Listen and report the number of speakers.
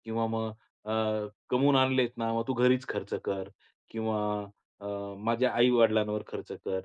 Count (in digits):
1